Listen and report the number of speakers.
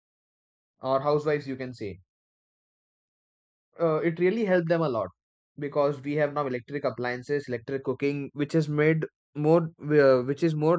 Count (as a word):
one